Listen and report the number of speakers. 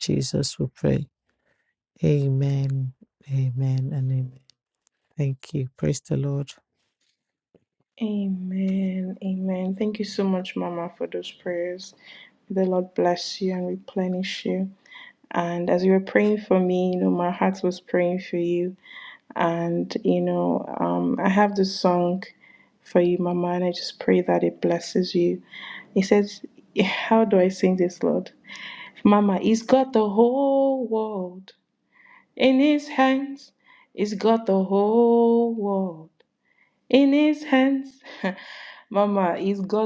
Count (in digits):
2